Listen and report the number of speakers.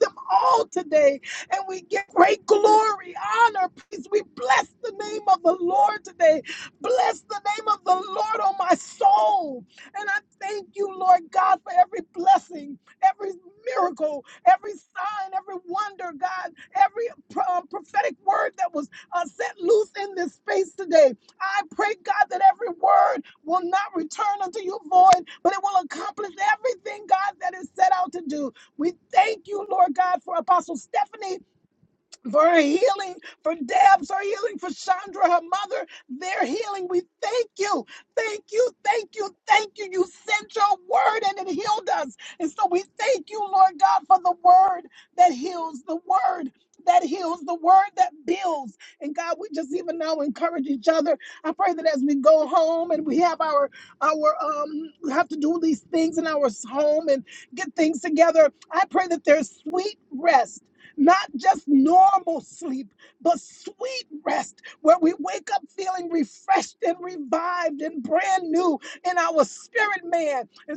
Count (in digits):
1